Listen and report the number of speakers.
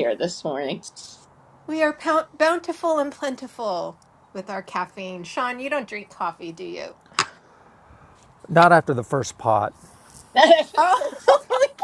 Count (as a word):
three